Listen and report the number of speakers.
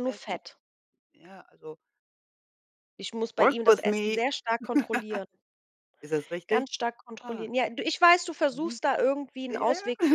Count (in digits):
2